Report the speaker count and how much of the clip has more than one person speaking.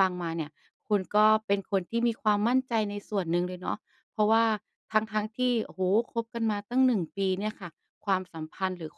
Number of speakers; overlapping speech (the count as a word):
one, no overlap